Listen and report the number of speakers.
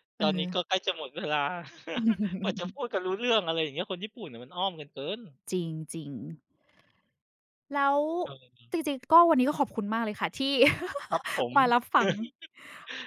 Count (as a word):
two